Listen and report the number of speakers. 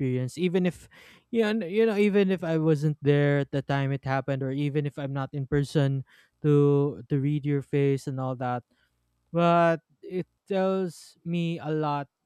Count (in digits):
1